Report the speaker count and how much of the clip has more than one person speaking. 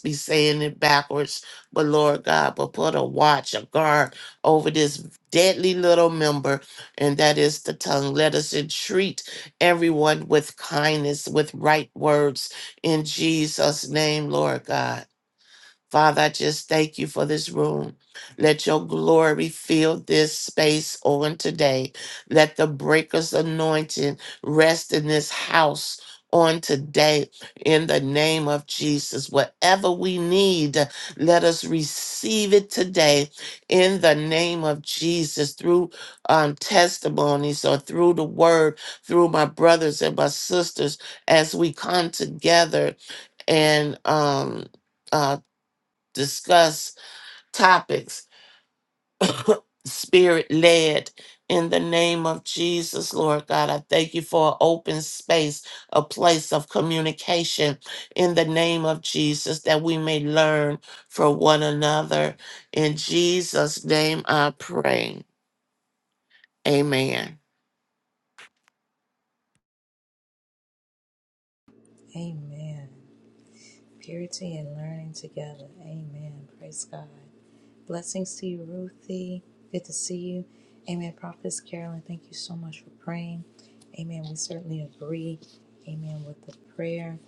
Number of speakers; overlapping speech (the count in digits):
2, no overlap